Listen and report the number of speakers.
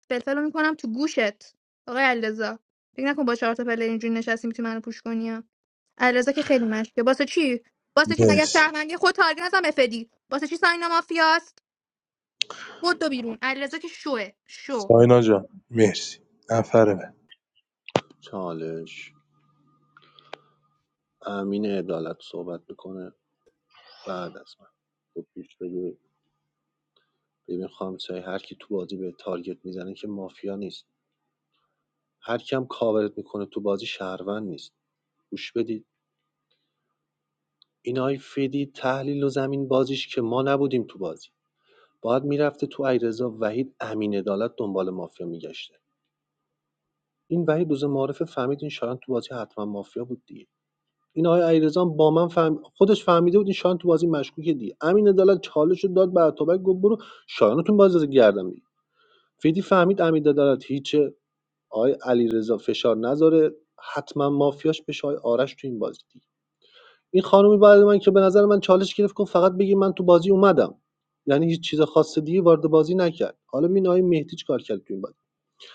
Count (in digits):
3